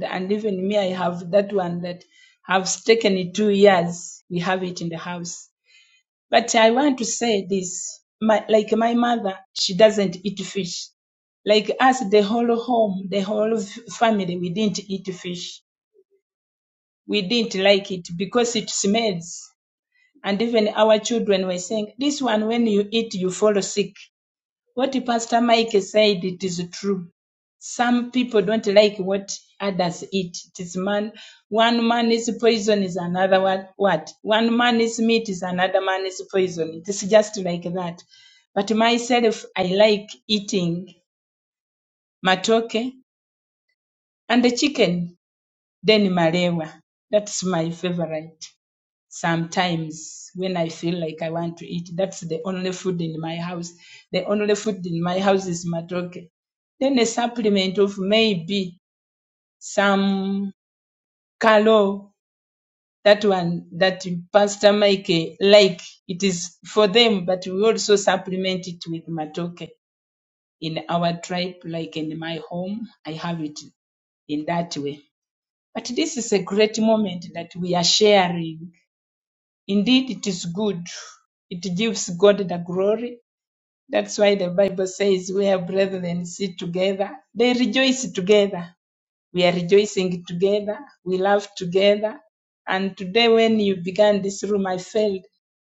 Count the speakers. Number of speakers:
one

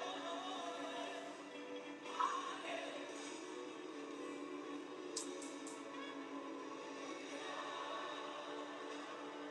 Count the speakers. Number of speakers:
zero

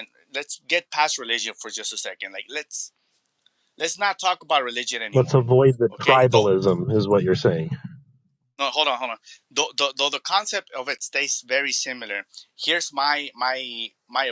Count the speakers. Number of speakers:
two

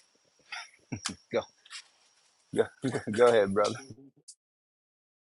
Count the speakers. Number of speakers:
one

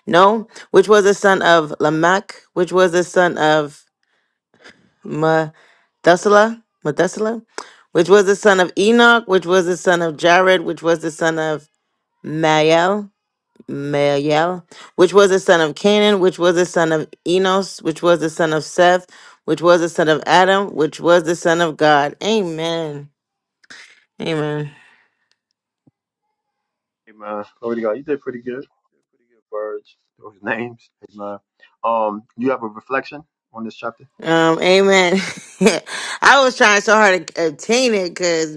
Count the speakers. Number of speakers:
two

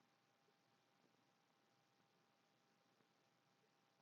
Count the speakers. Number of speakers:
zero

